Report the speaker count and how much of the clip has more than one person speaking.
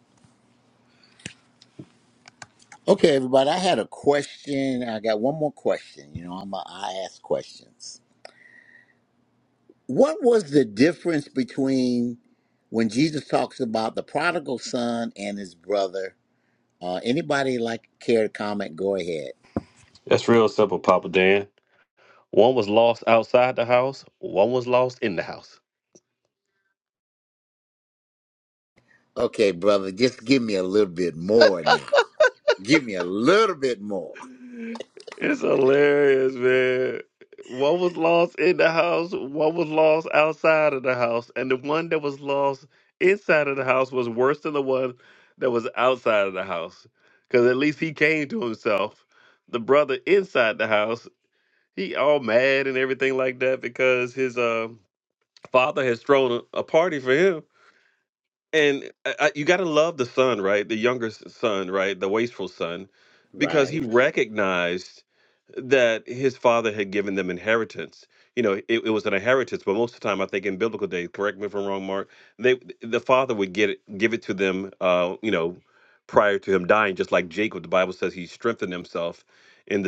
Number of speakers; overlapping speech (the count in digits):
2, about 1%